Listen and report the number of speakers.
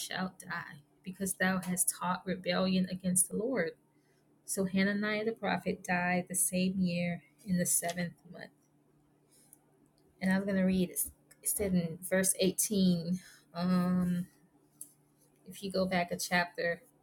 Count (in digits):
1